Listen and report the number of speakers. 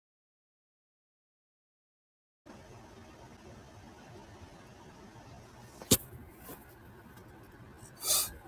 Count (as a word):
zero